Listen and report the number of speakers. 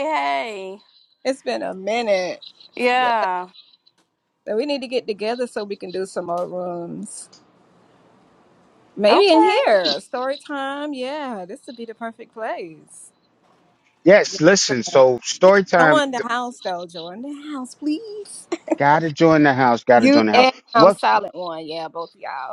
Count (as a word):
three